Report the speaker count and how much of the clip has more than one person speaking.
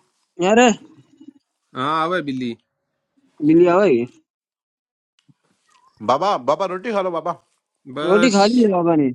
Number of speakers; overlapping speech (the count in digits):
3, about 4%